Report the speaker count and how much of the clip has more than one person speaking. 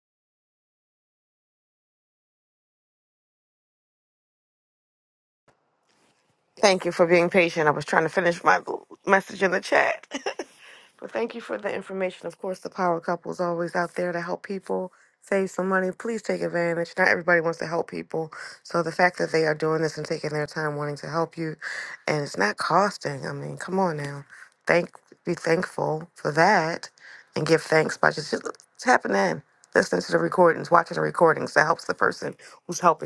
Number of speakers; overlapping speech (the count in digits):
1, no overlap